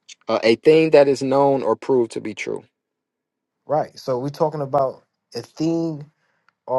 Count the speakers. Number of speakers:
two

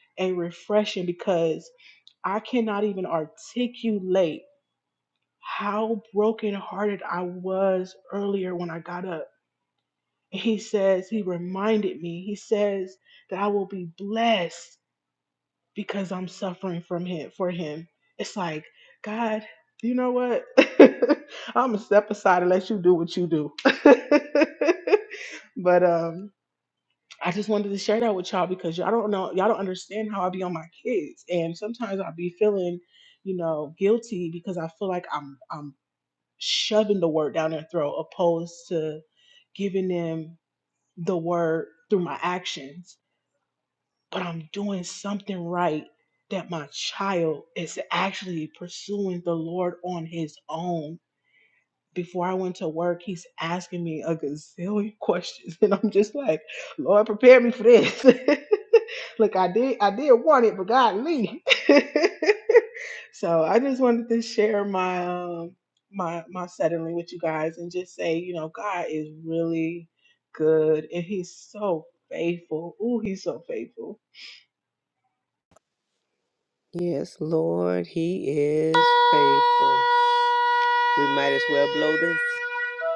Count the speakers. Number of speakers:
two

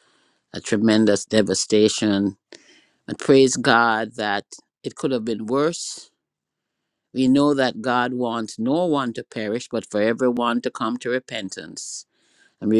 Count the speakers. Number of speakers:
one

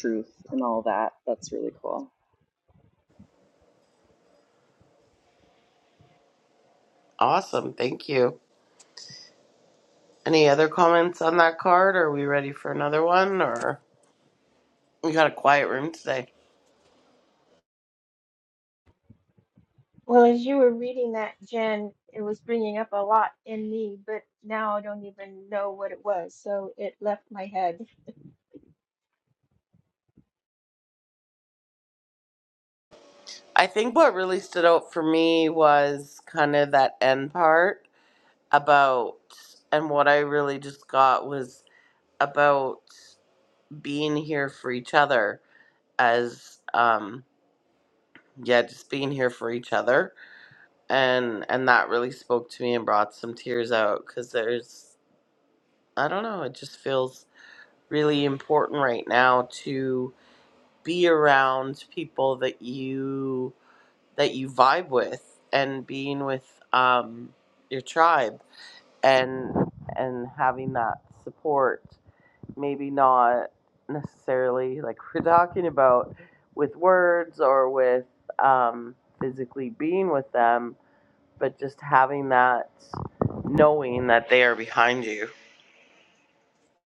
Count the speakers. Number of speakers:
three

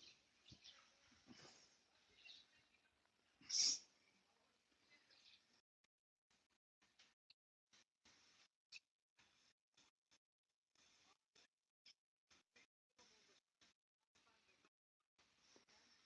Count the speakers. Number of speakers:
zero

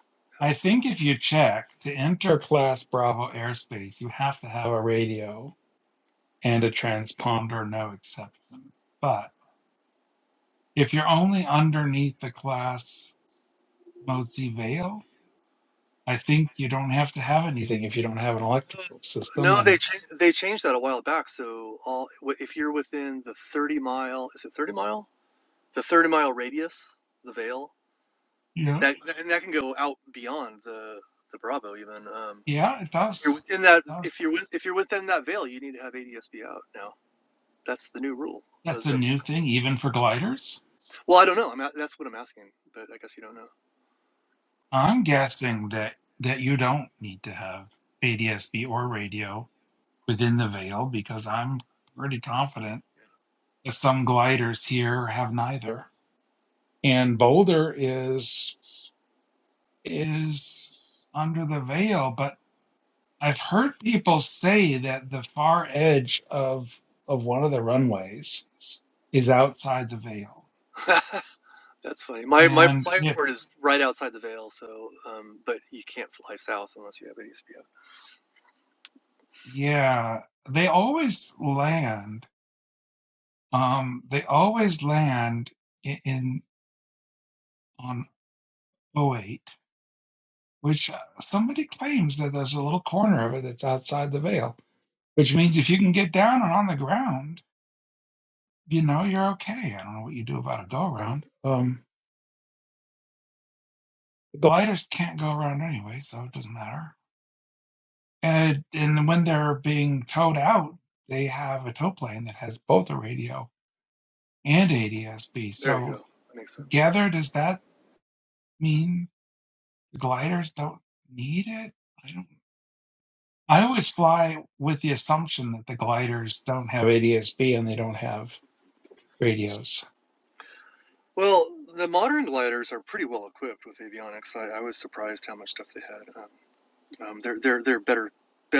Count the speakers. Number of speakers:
two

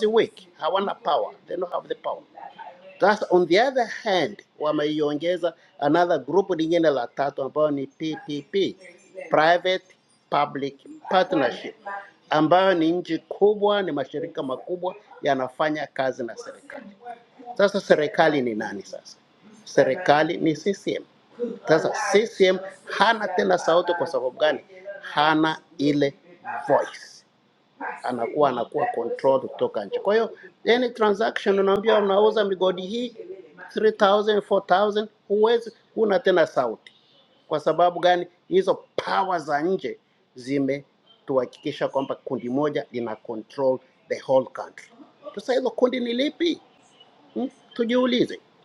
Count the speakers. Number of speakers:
one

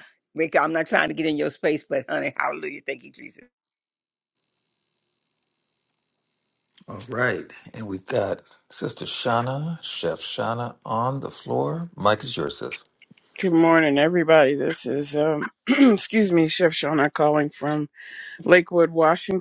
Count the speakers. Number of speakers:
three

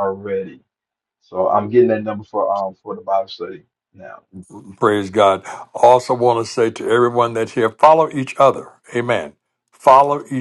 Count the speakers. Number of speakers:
two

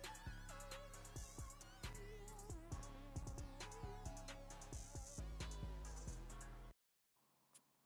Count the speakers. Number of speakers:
zero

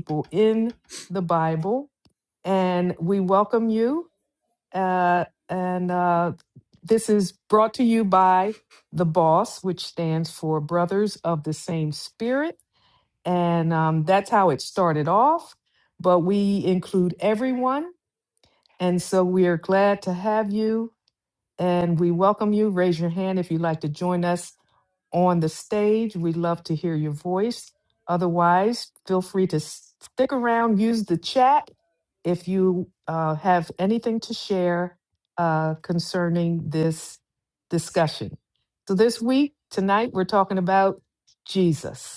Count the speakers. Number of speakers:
one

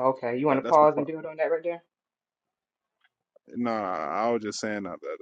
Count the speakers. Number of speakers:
two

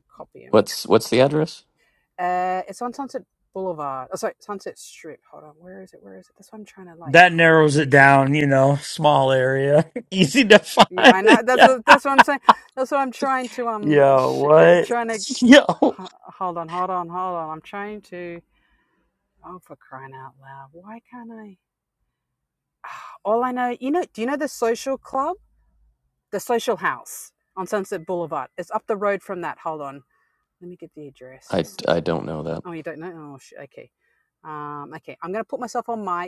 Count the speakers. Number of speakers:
three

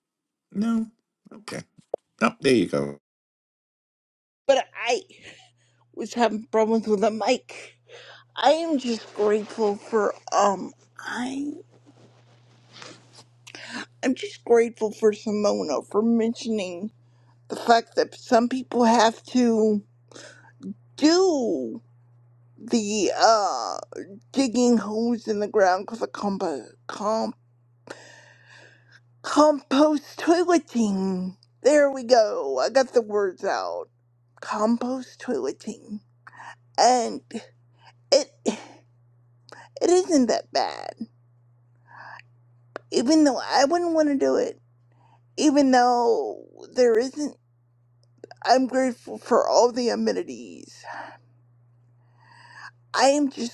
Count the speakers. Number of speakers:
two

